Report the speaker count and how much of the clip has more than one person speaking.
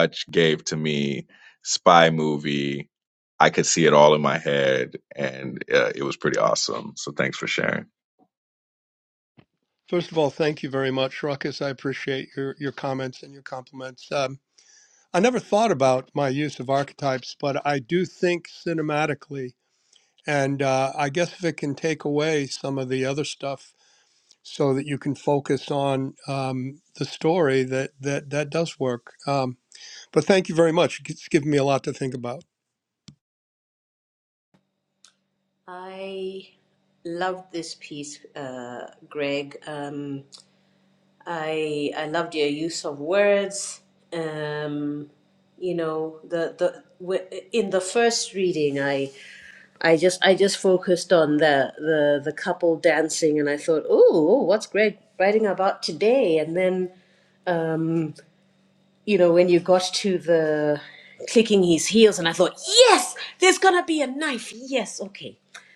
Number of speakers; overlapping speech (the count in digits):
3, no overlap